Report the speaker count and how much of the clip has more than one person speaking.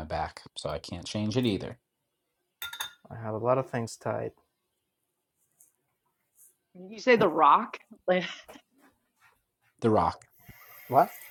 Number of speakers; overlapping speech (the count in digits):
3, no overlap